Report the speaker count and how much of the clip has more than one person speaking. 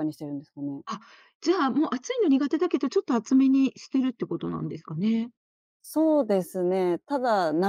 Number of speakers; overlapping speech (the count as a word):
two, no overlap